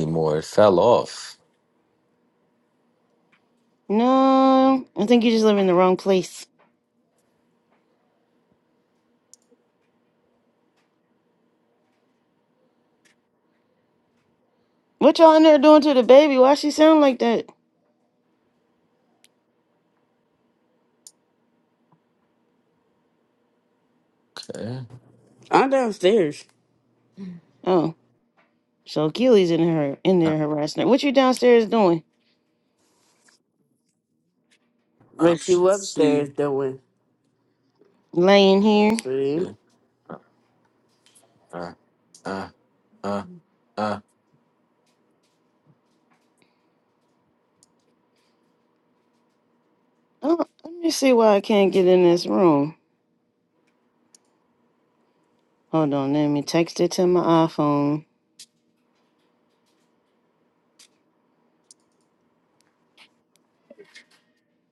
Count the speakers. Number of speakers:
3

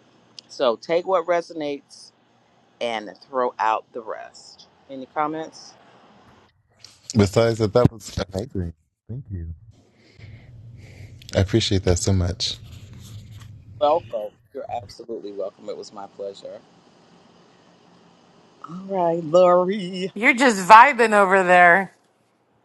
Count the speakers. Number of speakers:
3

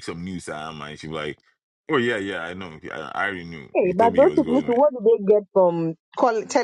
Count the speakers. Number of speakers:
2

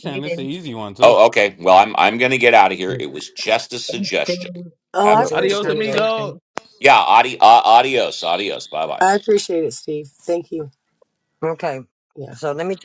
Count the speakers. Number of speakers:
4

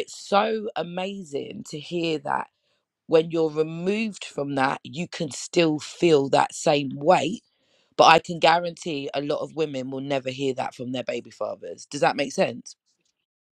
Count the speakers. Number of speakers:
1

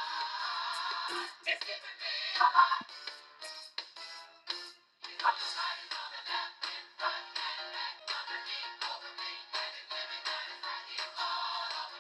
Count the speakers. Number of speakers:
0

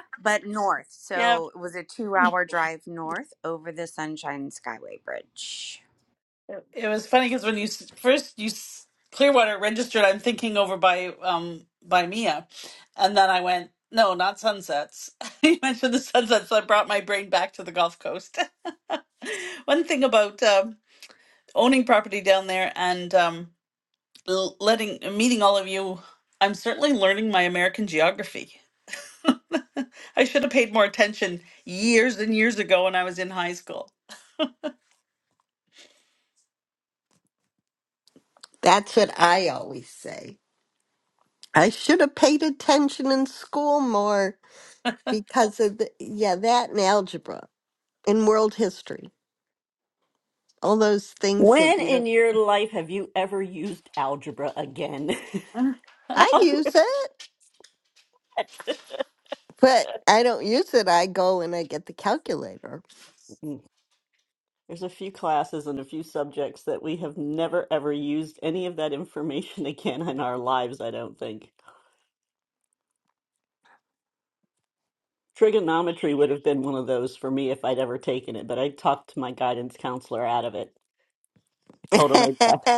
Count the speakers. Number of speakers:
4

